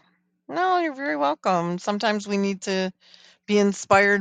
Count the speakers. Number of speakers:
1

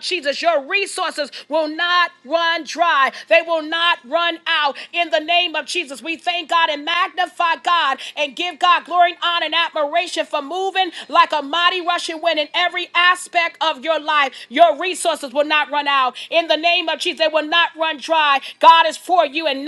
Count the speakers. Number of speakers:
1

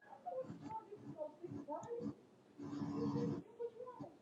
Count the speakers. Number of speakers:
0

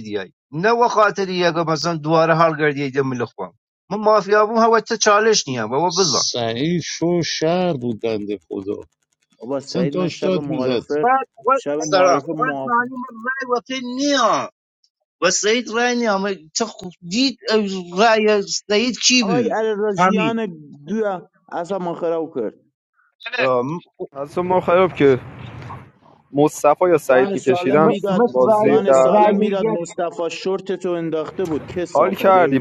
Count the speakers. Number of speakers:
4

